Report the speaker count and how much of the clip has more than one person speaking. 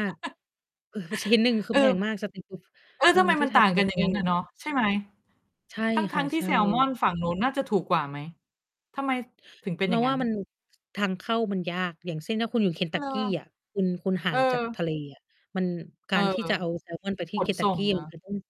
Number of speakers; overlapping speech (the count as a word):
two, about 19%